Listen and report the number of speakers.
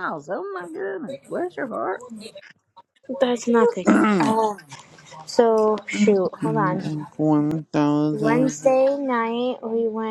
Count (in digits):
3